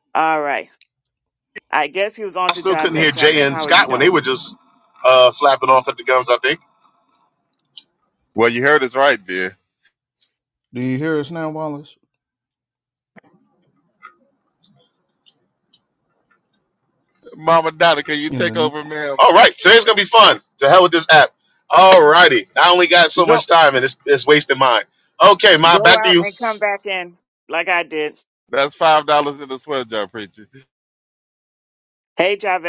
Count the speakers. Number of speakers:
four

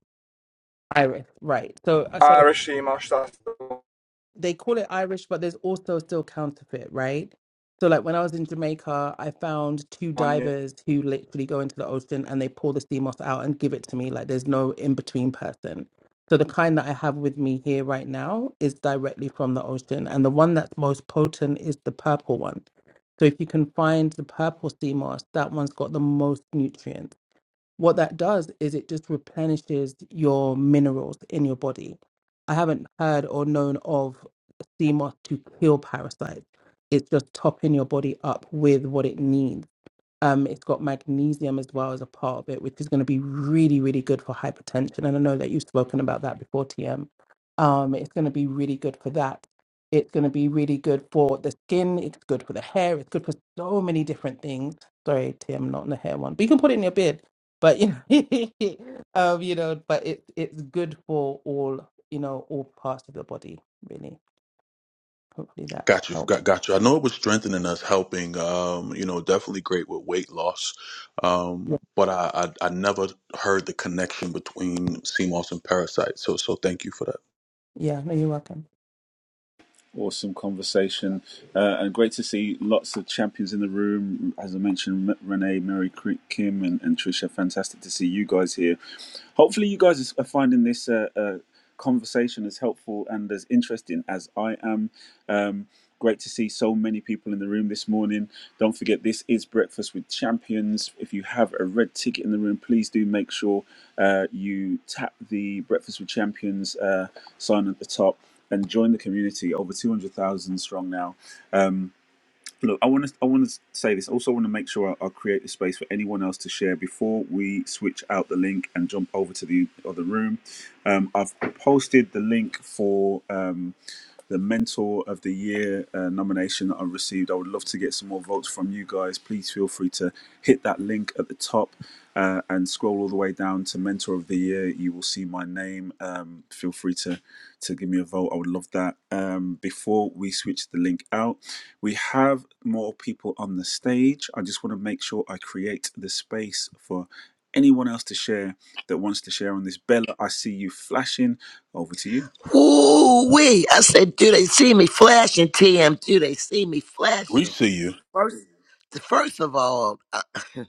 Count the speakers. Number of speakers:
five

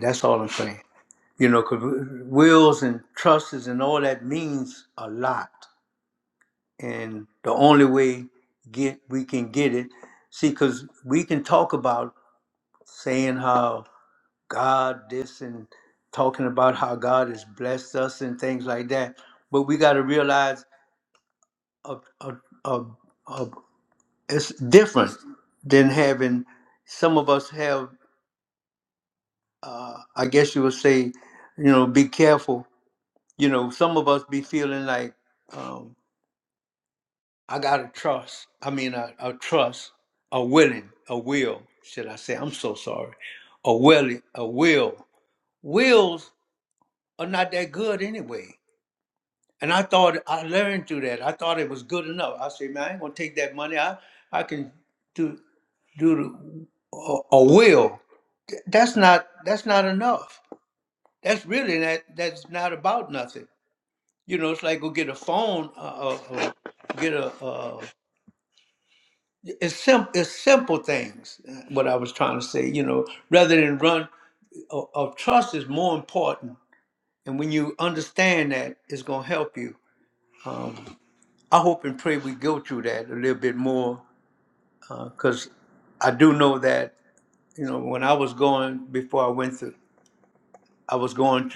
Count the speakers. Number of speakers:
one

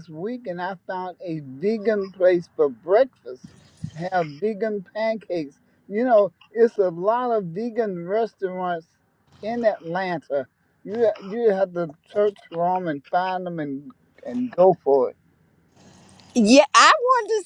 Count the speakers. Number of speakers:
two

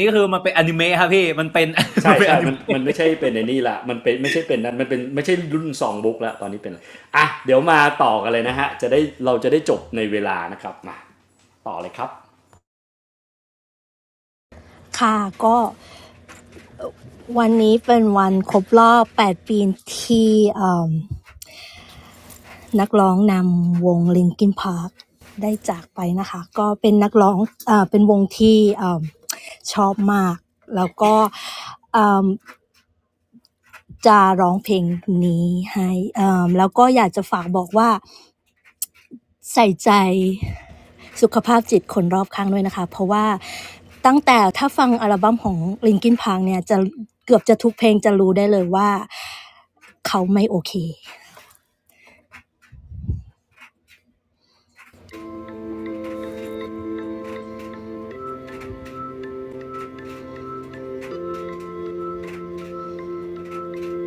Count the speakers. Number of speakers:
three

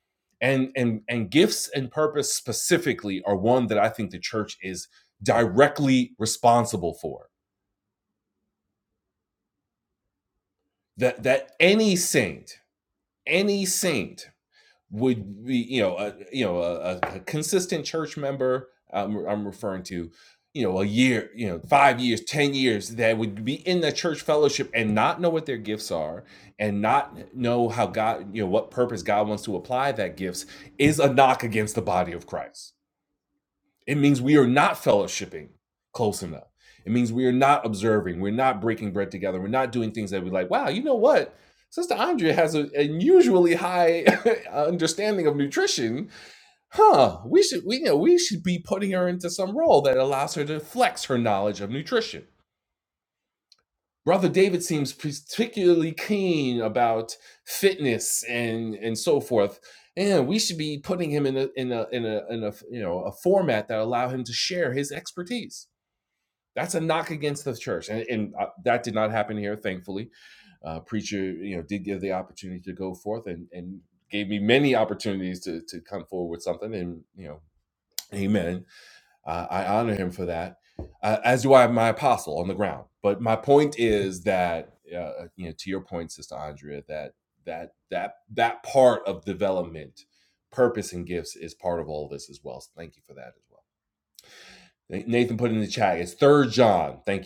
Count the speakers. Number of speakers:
one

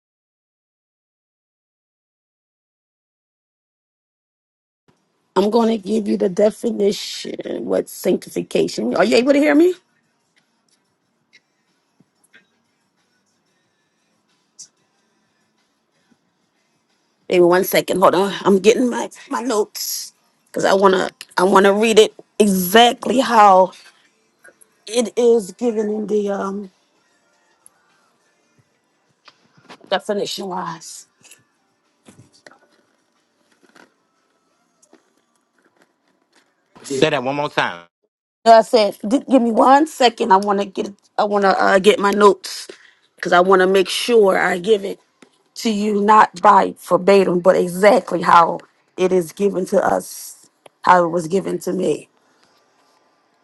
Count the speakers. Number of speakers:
two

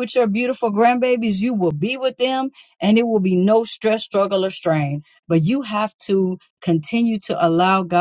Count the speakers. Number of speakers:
one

